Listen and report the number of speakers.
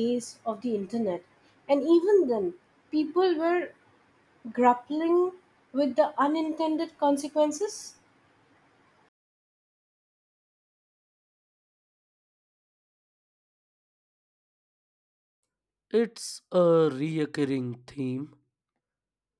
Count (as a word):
two